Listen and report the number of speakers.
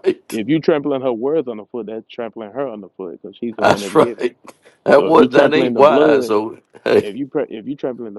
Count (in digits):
2